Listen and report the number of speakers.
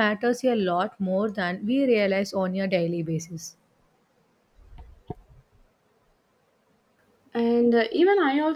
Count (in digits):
2